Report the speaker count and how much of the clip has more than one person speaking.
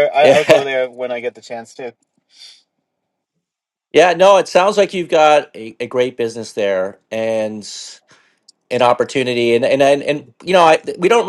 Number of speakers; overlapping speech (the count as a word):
two, no overlap